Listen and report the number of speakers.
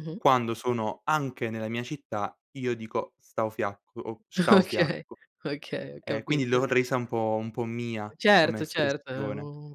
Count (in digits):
2